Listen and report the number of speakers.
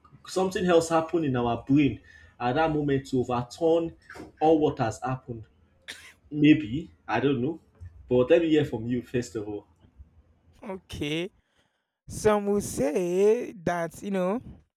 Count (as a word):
two